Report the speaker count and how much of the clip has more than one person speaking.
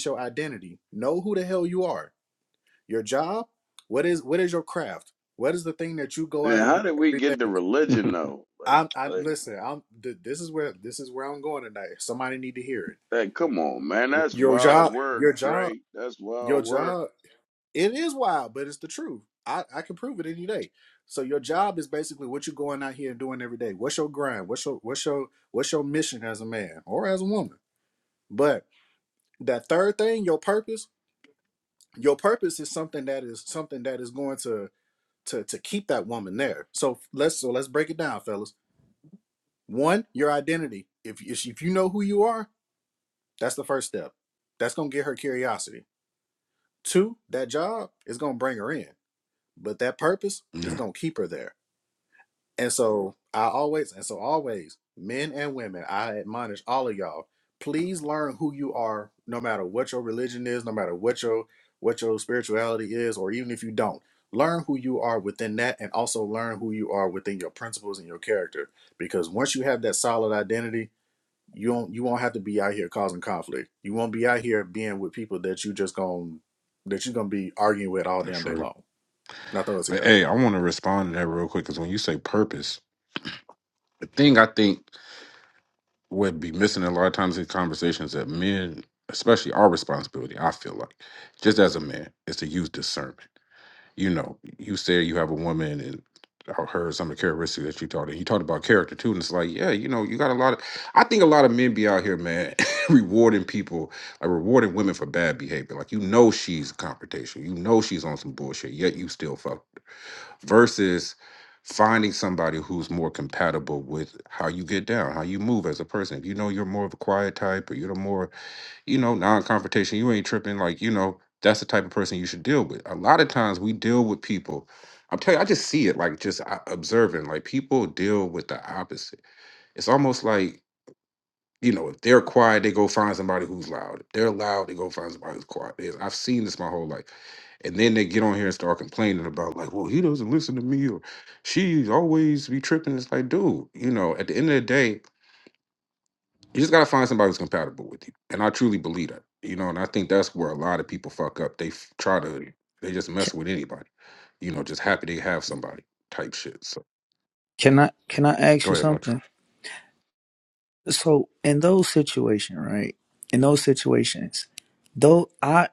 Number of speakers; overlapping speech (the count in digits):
4, about 3%